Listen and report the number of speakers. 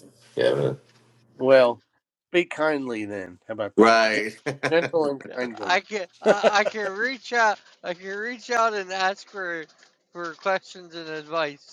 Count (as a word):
three